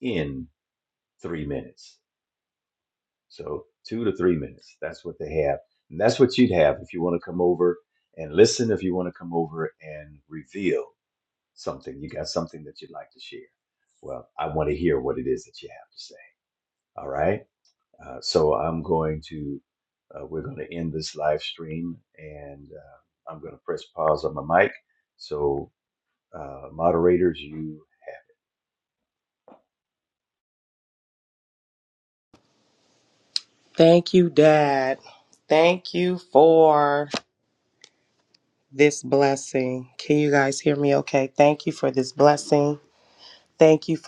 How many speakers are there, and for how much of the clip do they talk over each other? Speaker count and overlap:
2, no overlap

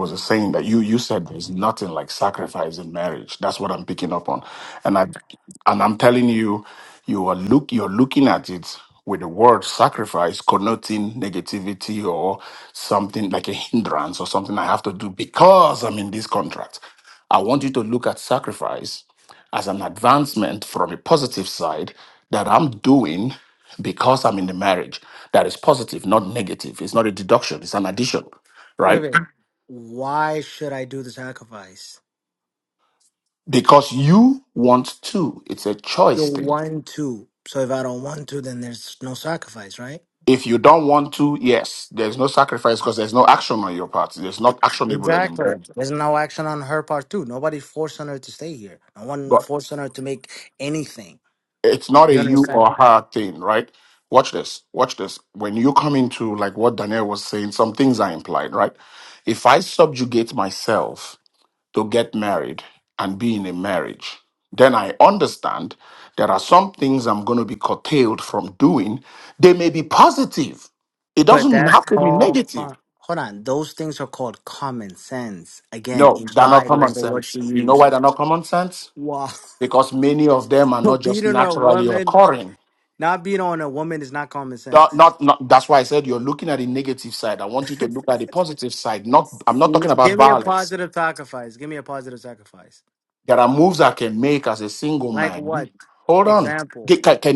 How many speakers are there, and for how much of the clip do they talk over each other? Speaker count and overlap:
2, about 8%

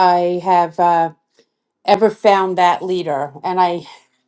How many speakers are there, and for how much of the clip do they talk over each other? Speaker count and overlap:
1, no overlap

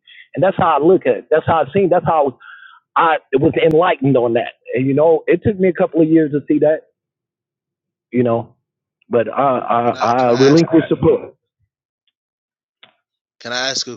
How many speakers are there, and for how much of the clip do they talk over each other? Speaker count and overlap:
2, about 5%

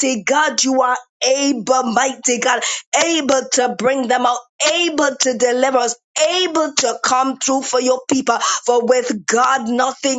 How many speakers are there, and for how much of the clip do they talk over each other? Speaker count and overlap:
1, no overlap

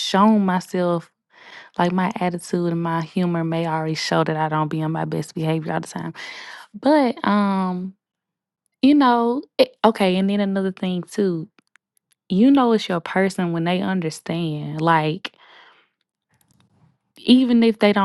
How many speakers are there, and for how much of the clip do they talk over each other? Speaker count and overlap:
1, no overlap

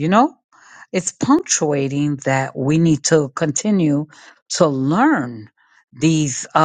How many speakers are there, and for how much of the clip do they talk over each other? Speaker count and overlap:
1, no overlap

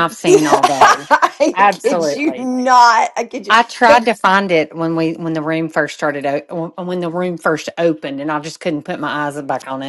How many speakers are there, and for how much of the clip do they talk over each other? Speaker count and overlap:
2, about 19%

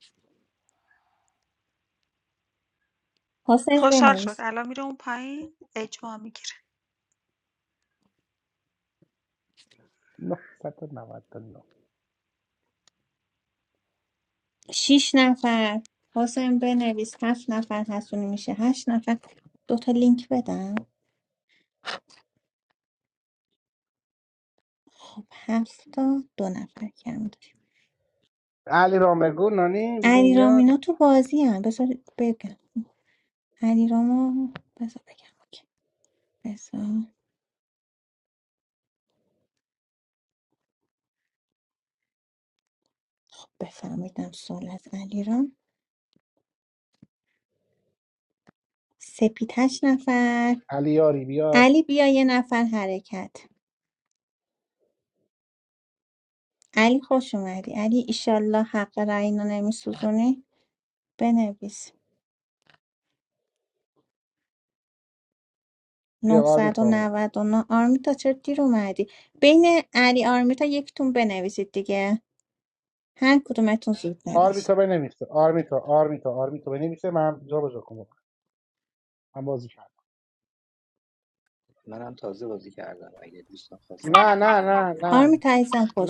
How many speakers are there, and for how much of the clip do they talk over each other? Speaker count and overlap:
4, about 4%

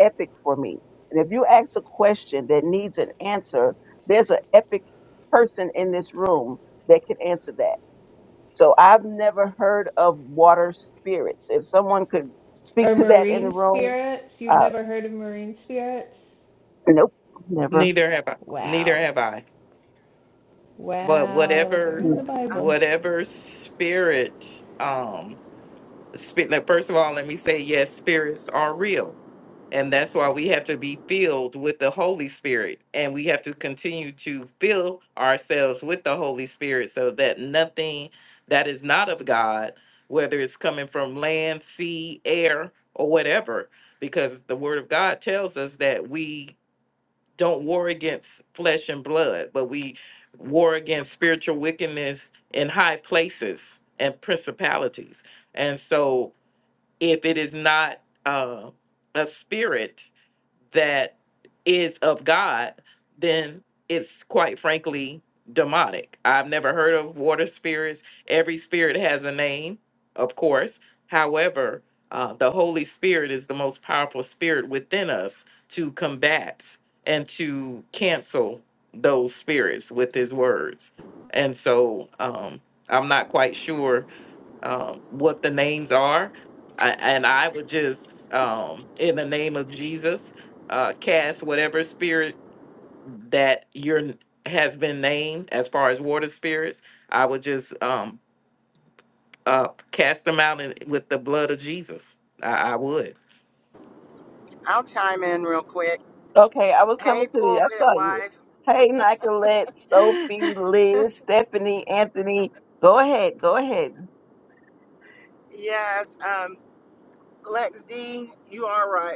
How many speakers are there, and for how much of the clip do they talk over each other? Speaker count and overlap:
4, about 4%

